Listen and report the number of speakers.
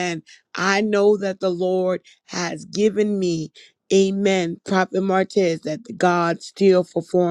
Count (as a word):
one